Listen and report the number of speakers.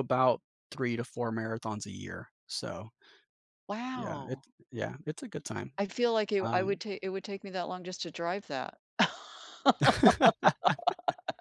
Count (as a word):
two